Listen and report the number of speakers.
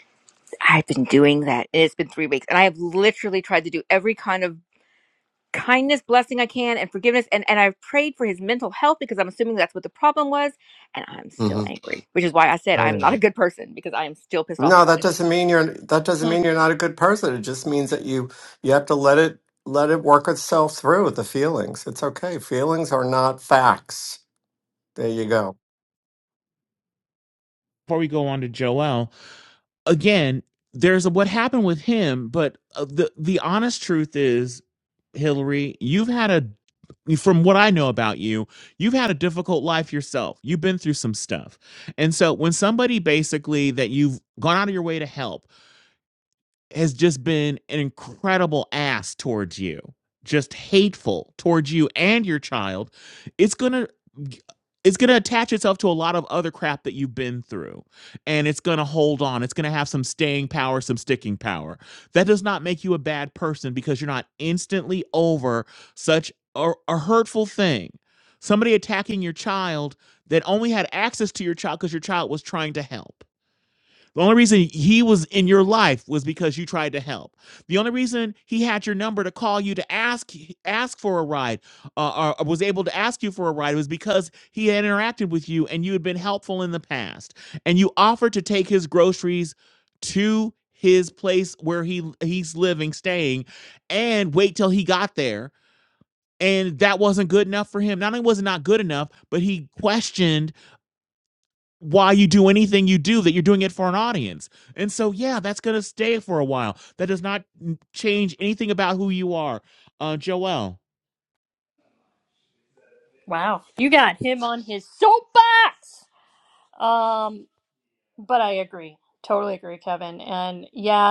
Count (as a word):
four